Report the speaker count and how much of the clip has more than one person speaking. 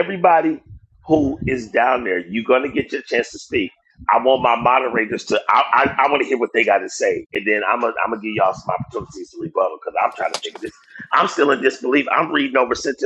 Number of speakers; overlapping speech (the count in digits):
1, no overlap